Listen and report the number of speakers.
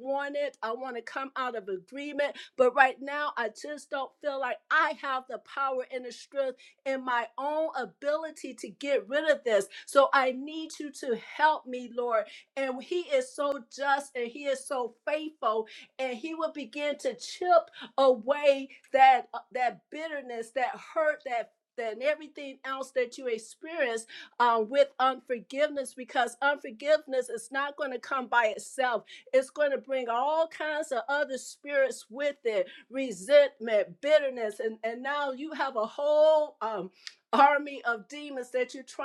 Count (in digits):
1